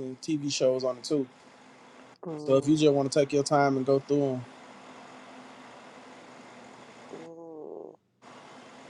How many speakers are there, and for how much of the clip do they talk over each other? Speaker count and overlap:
2, about 2%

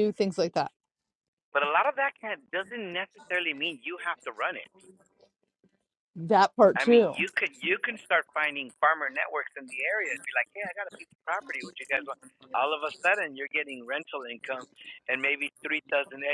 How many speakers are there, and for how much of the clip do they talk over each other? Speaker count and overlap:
2, about 3%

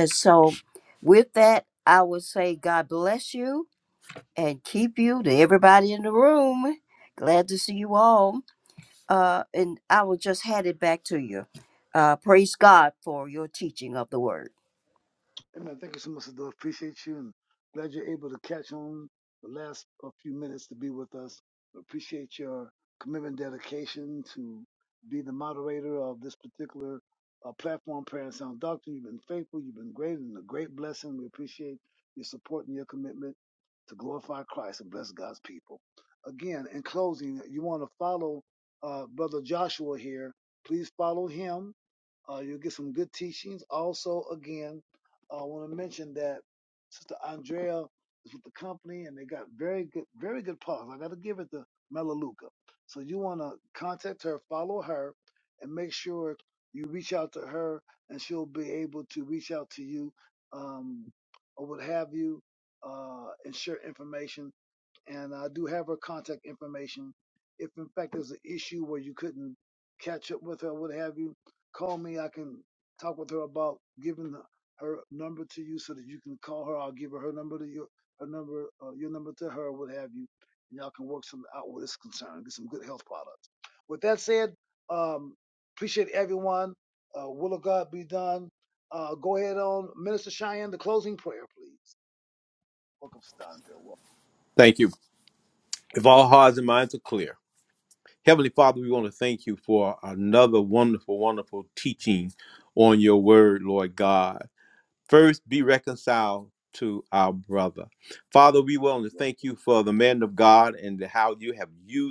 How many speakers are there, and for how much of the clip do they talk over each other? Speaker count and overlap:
3, under 1%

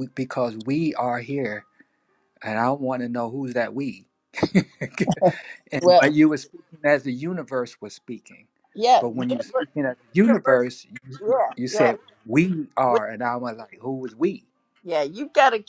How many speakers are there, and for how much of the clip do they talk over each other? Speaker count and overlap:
2, about 9%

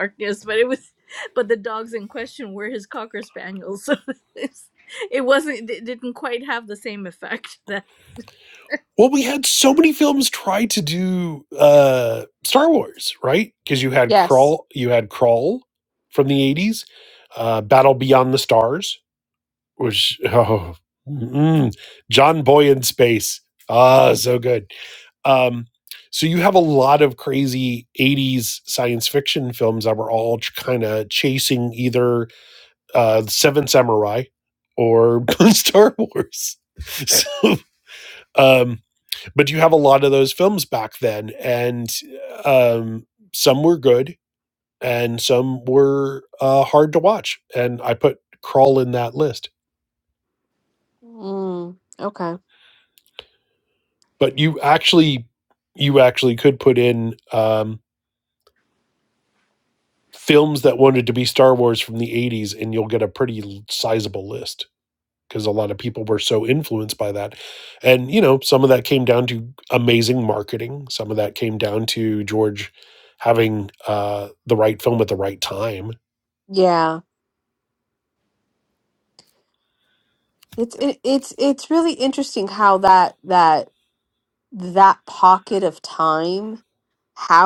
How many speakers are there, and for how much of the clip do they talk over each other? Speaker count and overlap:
3, under 1%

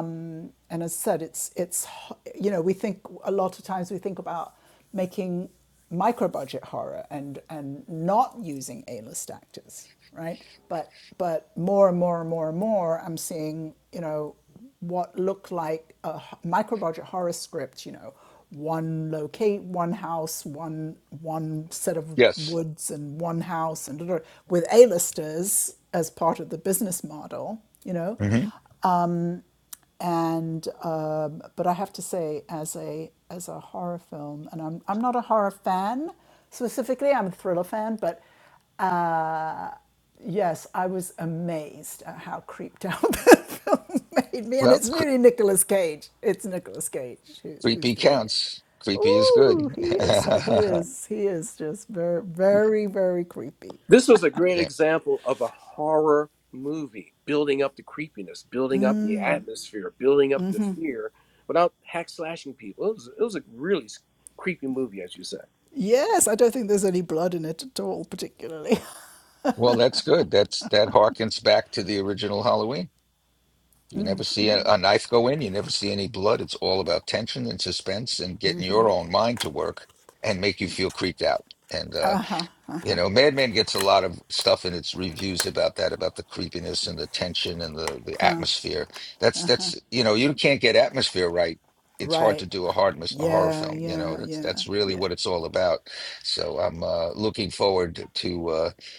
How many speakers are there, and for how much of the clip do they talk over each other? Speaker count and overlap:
3, about 5%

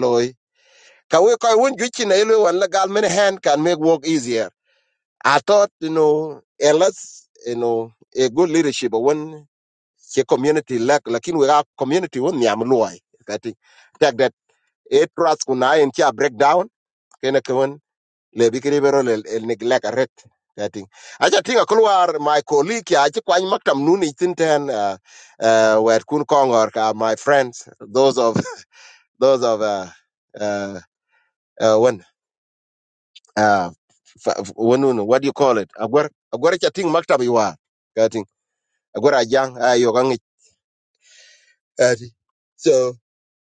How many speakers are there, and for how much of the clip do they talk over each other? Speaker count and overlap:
1, no overlap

